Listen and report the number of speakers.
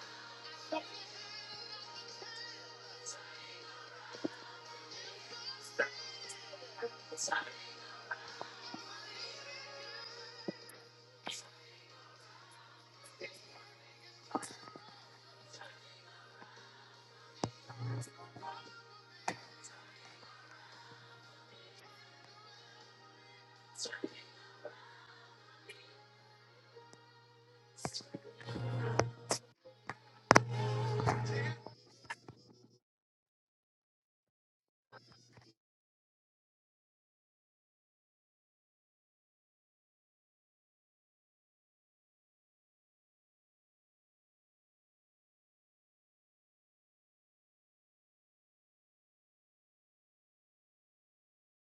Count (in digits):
0